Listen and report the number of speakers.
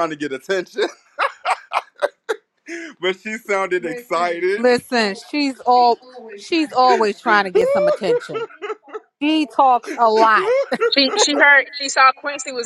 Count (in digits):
3